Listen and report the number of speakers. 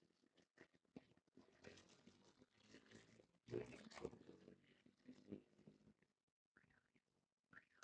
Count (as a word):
zero